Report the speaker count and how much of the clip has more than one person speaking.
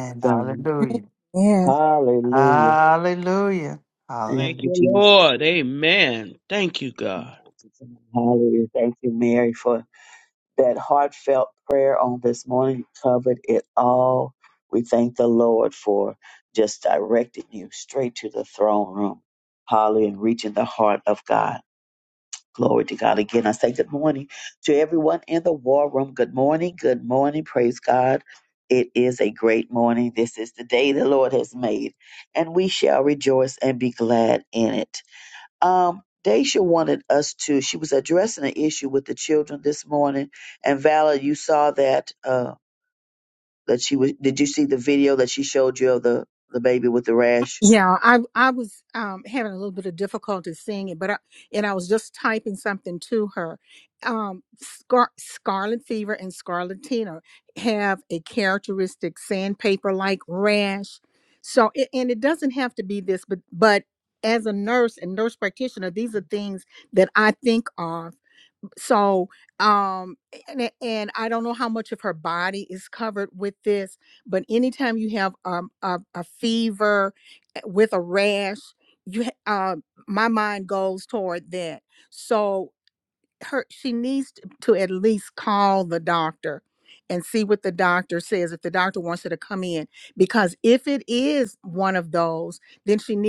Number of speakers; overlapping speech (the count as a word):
four, about 2%